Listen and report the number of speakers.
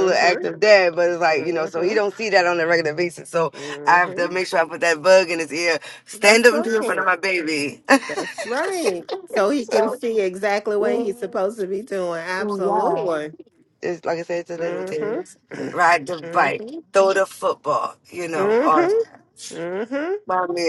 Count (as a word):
two